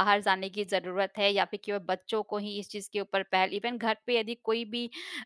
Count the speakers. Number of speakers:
1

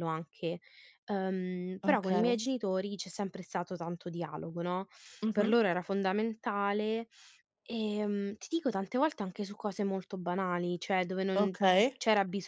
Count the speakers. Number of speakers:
2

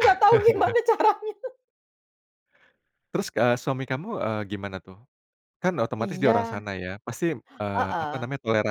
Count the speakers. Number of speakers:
2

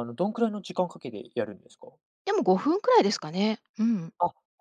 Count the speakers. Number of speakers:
2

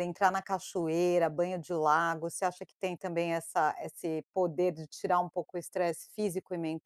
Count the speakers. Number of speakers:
1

